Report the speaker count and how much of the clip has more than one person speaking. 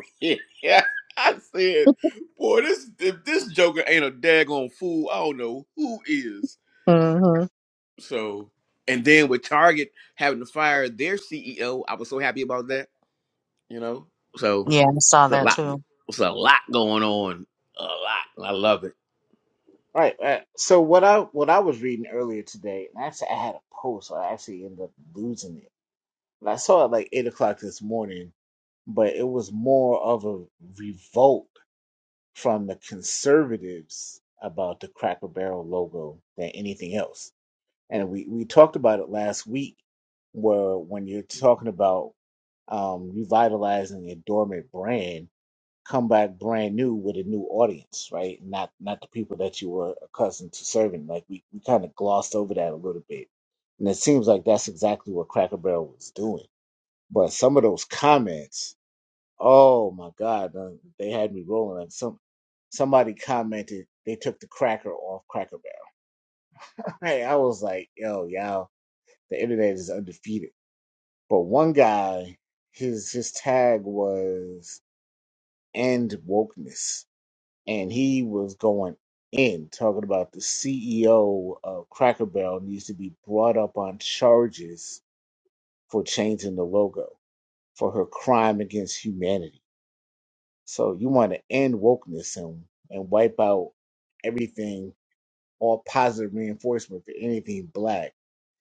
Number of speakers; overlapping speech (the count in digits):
3, under 1%